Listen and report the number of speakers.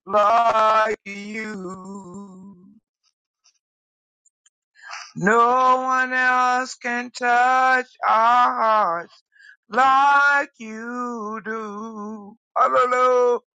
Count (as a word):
one